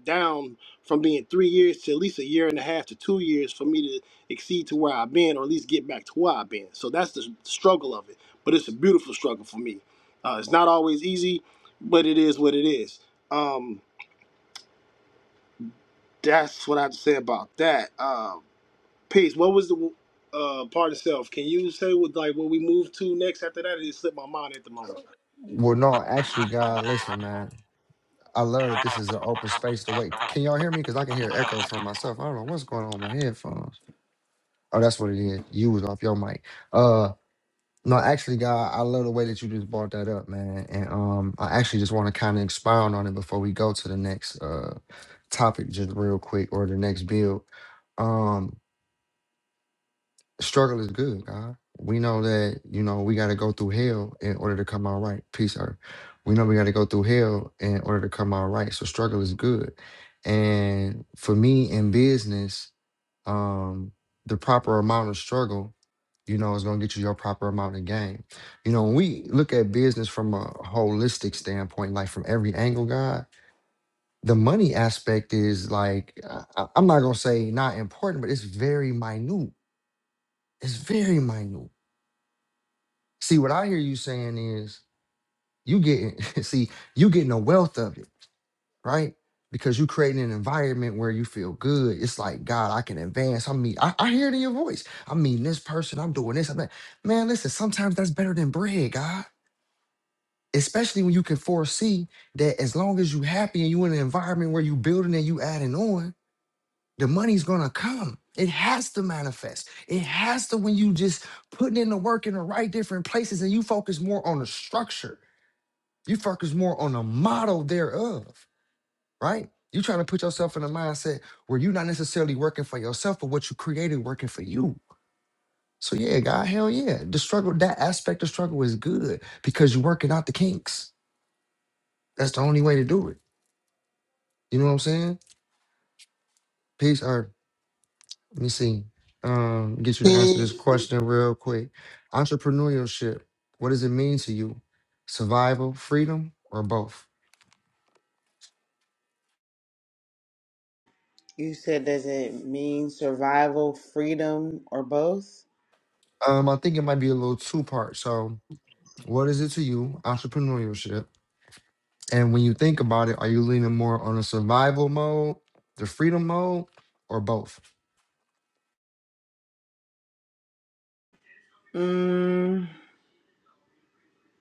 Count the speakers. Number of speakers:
3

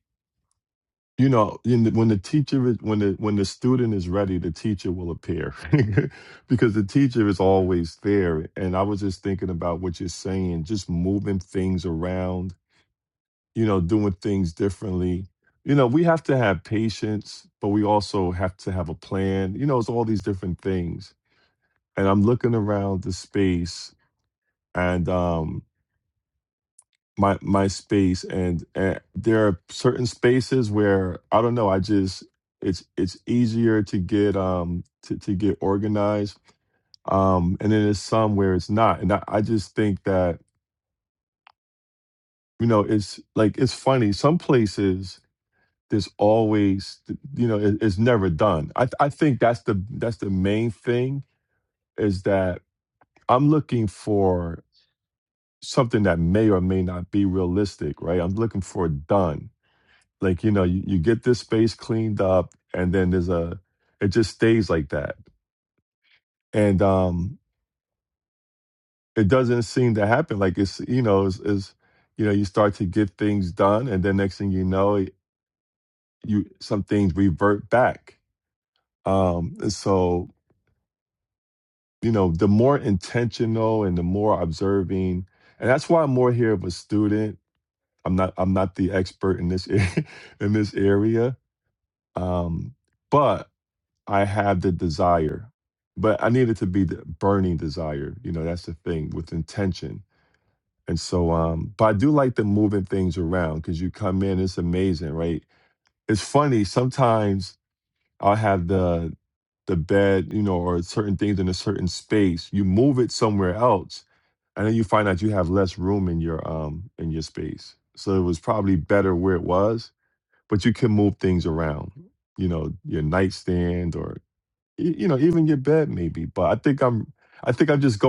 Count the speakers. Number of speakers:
1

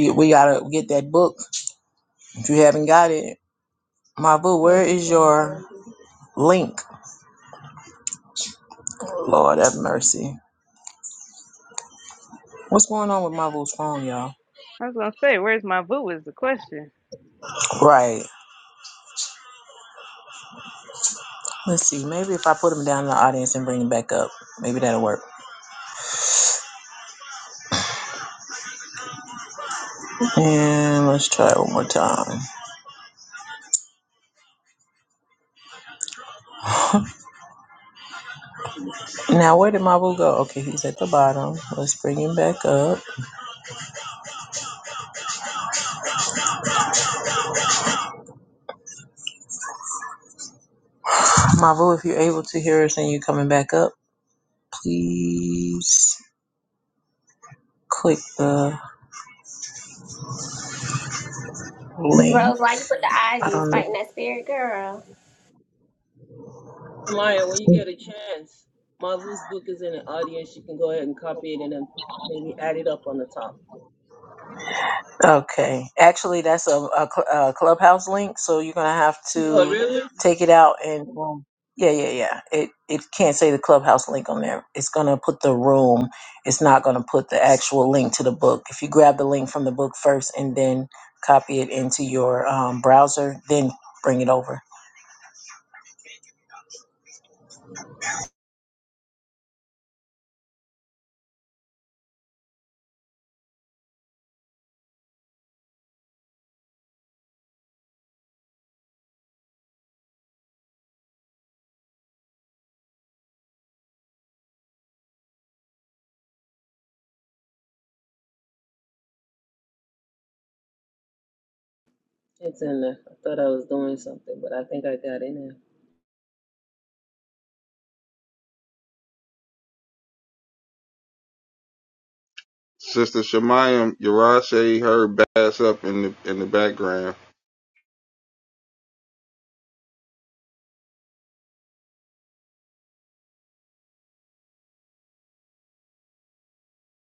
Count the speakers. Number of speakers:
5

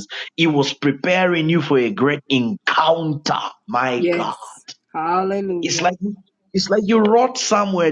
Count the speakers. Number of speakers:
2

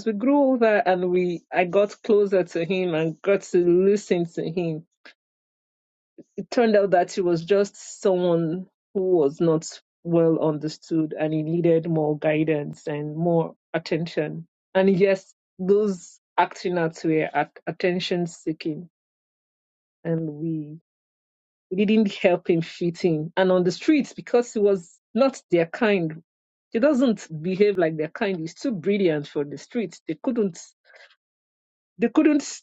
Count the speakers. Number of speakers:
1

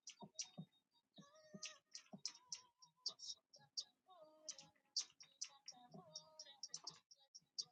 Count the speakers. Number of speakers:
0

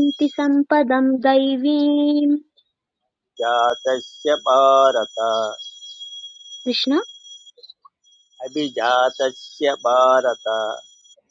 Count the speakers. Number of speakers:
2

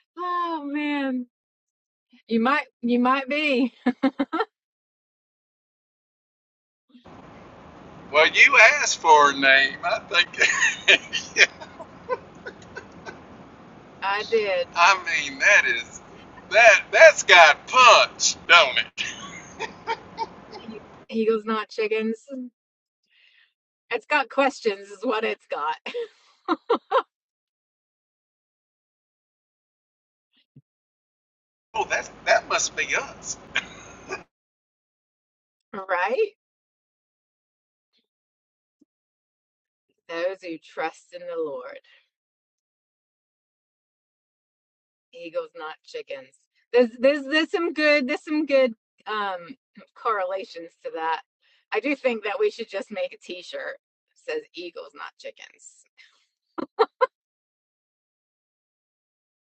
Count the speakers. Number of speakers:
2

